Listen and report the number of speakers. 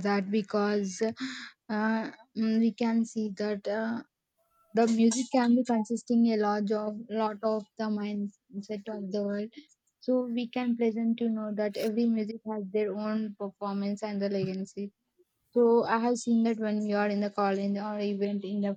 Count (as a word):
one